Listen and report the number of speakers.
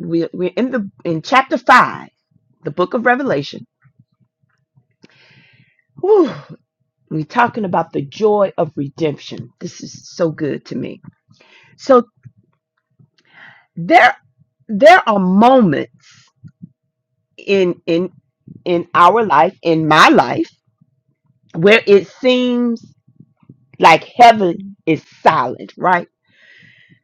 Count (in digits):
1